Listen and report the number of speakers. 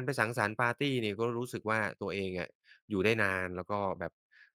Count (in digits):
1